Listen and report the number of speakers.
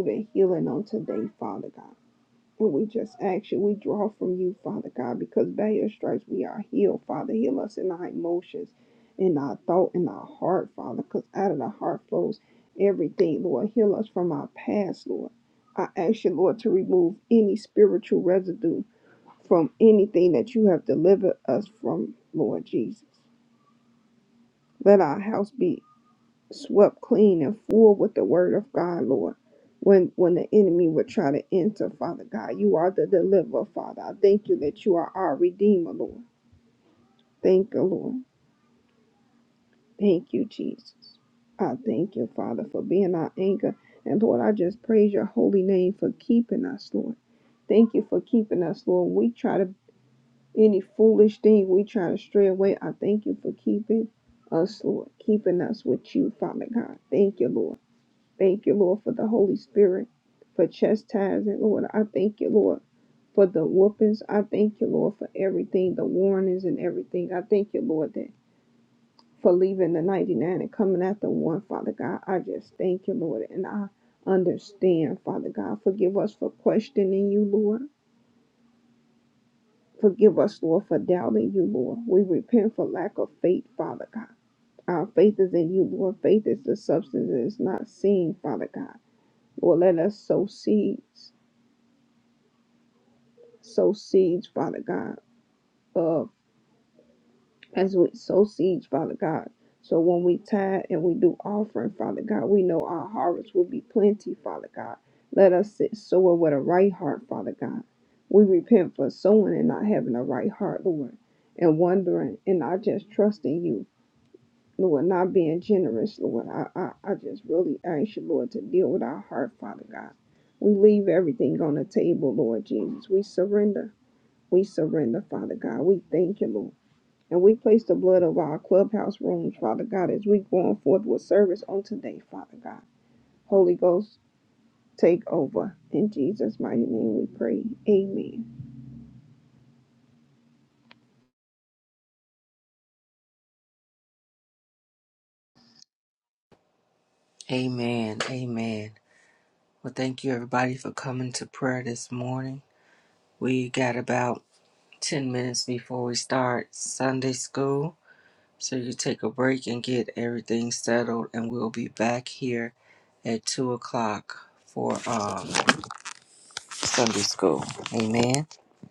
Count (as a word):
two